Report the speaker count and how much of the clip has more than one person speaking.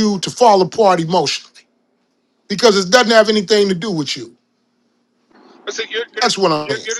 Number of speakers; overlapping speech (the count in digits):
2, about 9%